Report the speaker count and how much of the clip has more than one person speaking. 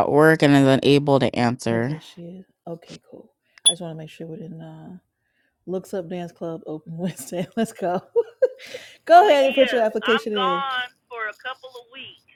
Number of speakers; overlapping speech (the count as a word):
three, about 14%